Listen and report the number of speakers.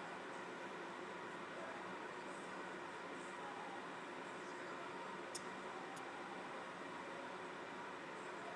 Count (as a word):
zero